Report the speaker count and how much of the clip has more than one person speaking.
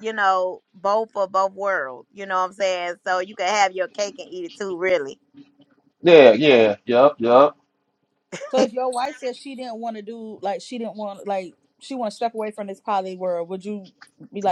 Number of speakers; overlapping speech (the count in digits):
3, no overlap